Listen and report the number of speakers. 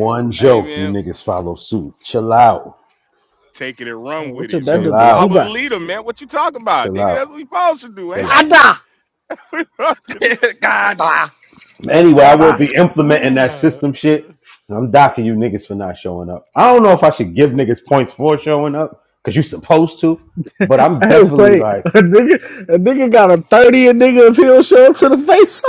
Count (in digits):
4